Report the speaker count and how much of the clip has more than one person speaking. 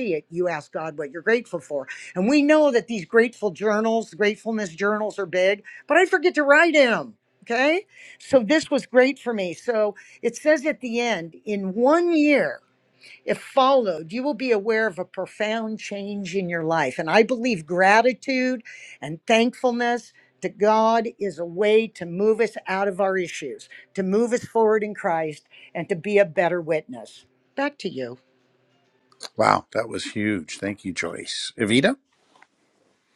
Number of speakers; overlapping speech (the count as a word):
two, no overlap